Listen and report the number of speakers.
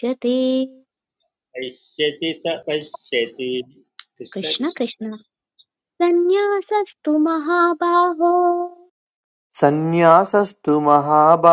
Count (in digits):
3